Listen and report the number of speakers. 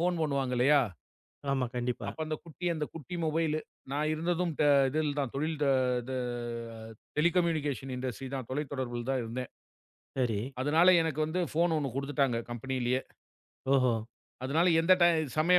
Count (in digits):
2